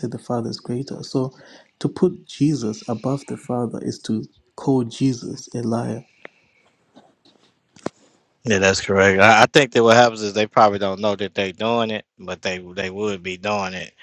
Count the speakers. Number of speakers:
2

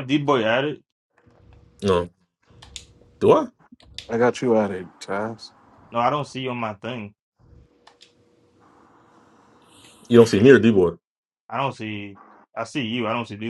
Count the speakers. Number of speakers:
3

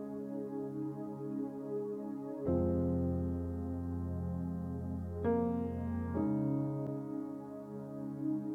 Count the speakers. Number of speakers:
0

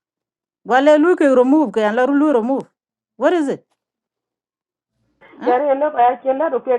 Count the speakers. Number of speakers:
2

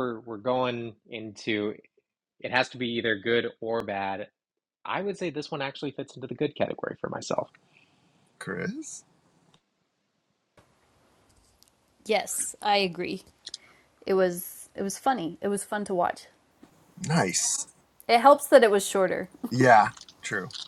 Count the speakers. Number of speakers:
3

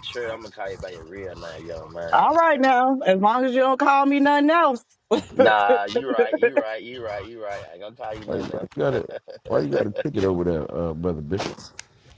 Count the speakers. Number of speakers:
3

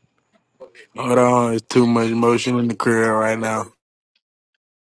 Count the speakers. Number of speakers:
1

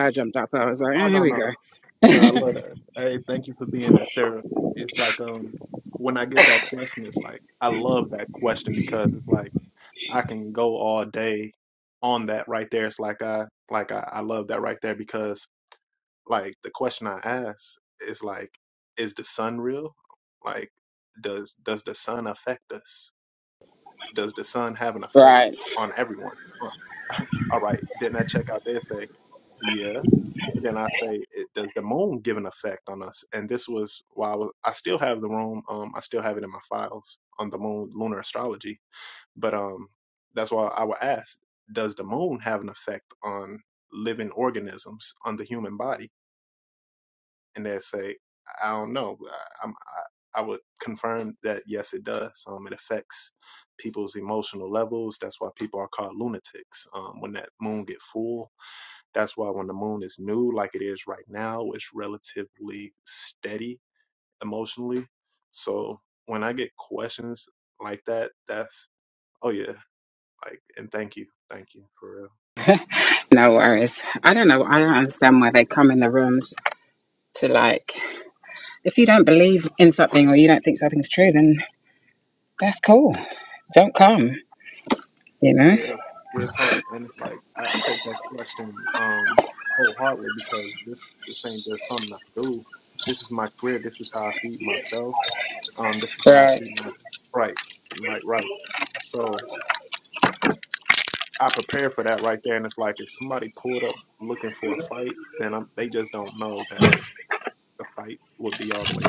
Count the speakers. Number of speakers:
2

